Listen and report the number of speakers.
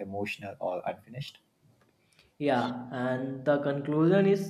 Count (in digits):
2